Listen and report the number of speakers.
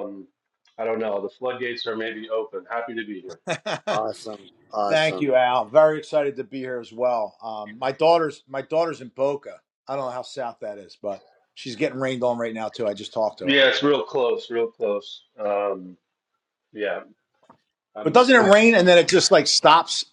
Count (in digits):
3